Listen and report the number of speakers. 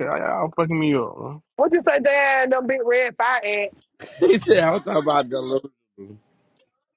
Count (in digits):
3